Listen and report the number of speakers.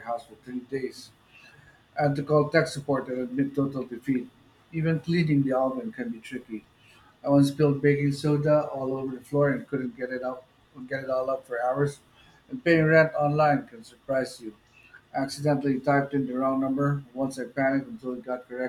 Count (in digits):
1